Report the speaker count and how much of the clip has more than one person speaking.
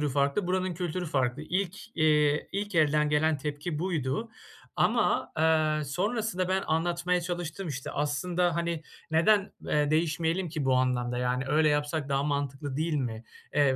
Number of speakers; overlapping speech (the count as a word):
one, no overlap